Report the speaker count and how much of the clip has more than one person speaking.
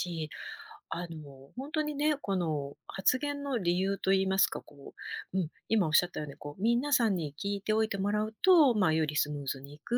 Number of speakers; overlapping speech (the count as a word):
one, no overlap